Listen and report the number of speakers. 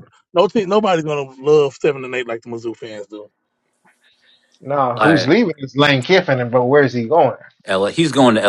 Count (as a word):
three